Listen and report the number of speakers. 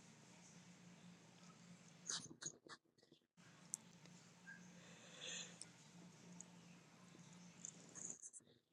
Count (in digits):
0